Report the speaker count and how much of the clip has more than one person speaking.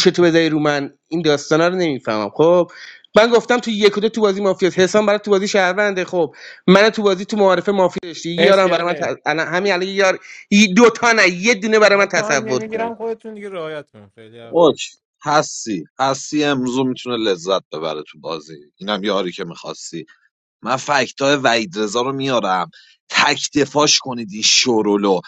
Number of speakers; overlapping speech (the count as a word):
three, about 8%